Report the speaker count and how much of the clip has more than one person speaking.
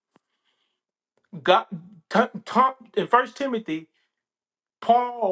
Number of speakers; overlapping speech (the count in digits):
1, no overlap